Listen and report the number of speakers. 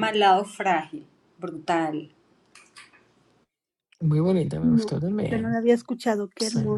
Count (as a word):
three